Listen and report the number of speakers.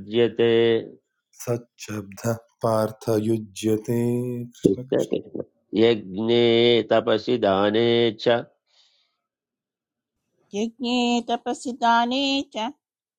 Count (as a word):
three